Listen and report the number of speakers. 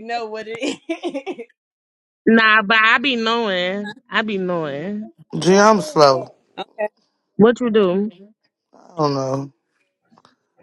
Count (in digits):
3